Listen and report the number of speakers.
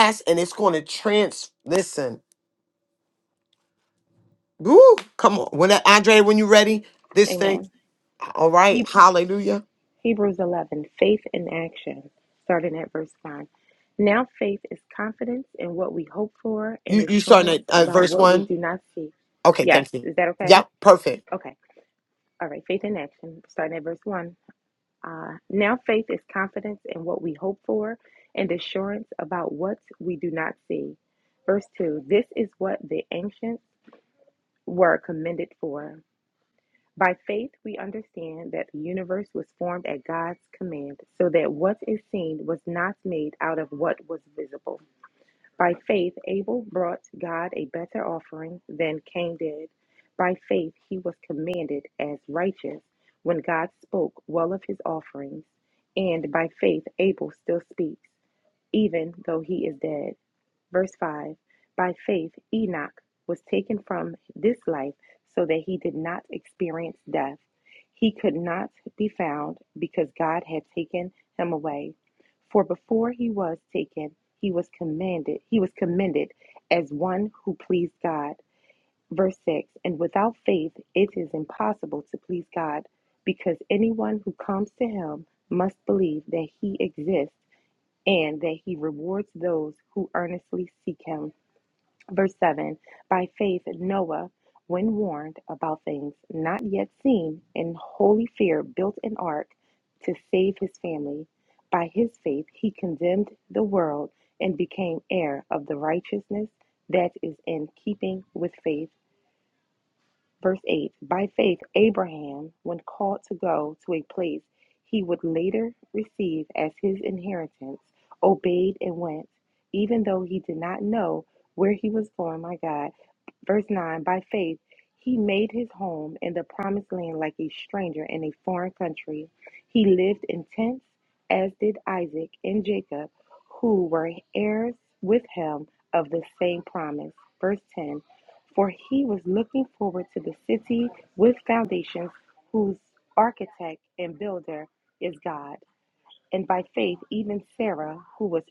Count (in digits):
2